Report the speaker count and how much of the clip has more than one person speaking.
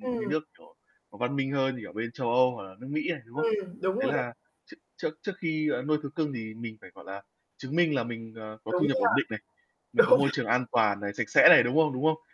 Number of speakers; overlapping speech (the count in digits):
2, about 11%